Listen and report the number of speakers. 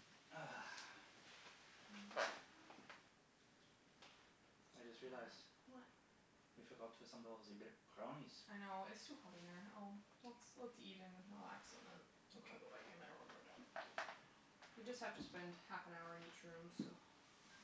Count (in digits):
2